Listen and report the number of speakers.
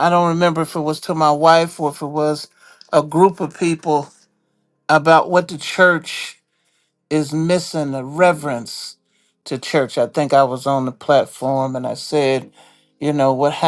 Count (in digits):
1